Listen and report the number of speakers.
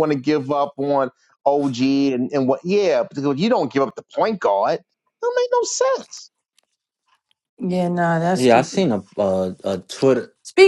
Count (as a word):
three